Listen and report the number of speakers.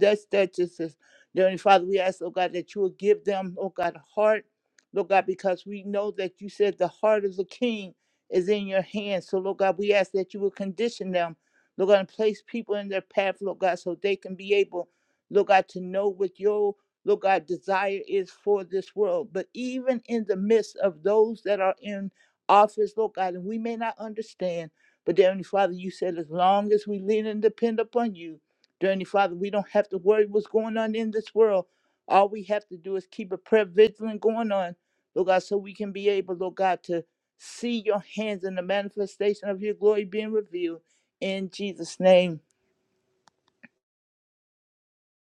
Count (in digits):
1